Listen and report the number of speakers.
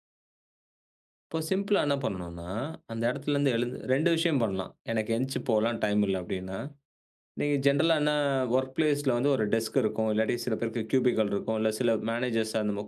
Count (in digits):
1